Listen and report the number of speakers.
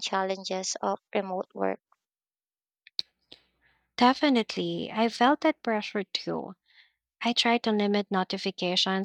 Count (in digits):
2